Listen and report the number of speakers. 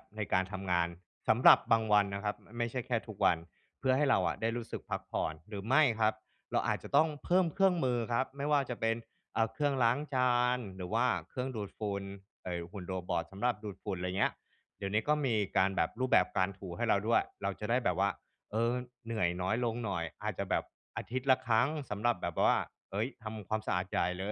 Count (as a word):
one